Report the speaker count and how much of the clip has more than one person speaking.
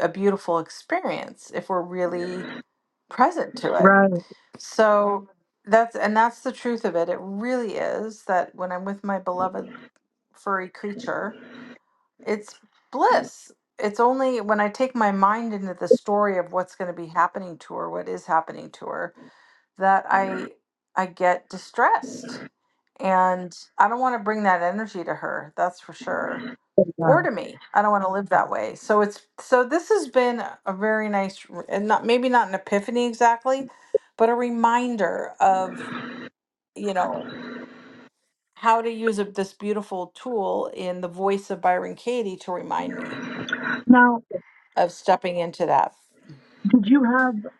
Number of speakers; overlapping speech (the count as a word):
two, about 1%